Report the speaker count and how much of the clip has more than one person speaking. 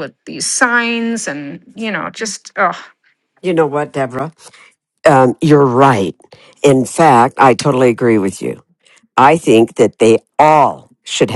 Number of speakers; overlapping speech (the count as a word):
two, no overlap